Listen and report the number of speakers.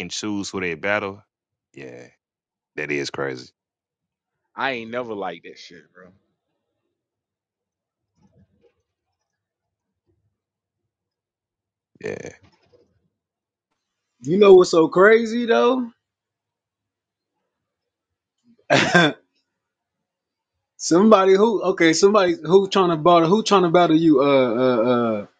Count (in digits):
3